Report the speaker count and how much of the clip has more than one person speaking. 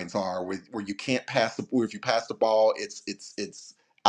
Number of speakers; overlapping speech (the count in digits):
1, no overlap